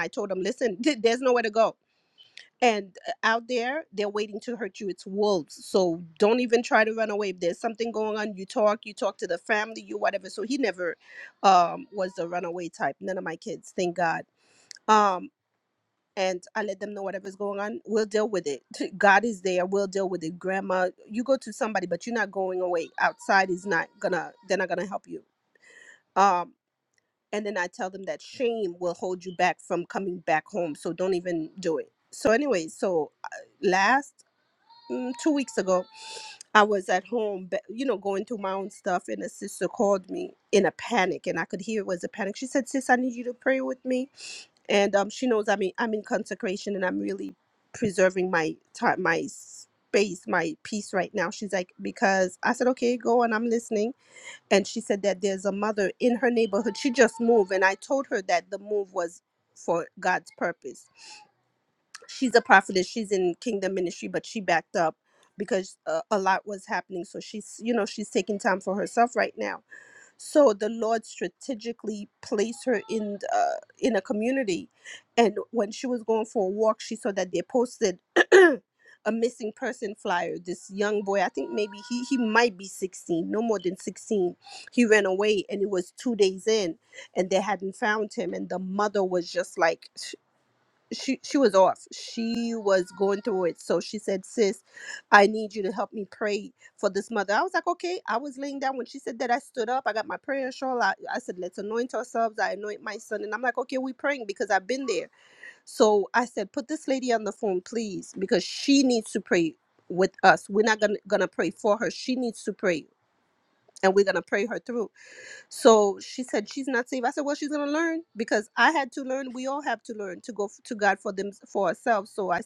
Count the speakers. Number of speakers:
one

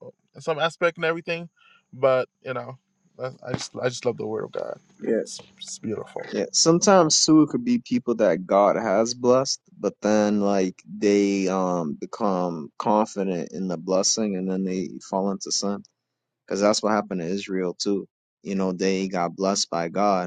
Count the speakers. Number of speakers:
two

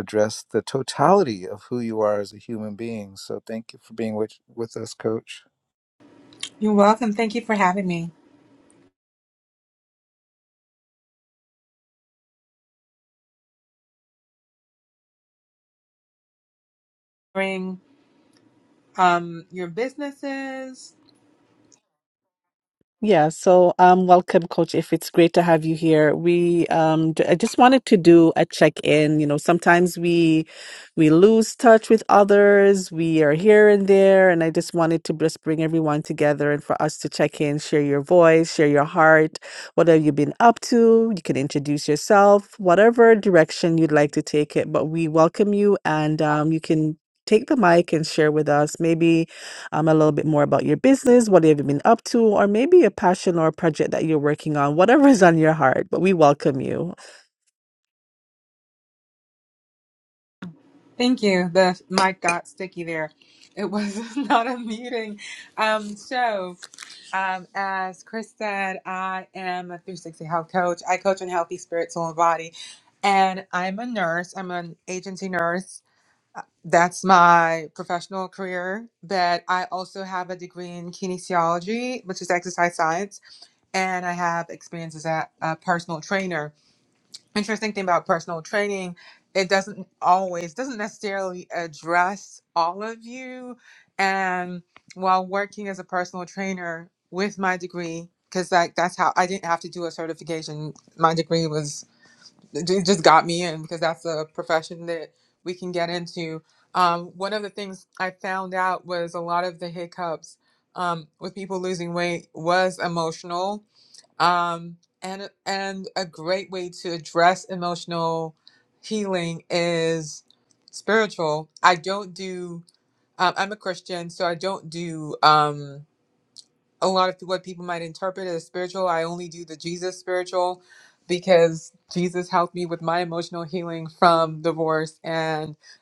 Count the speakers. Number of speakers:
three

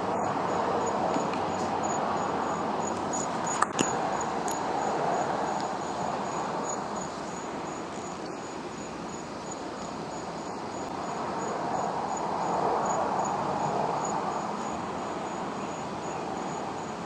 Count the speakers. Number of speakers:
zero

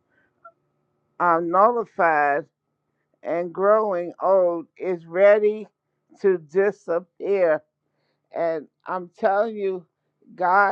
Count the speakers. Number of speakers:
one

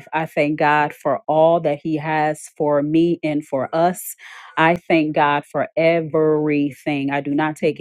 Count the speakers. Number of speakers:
one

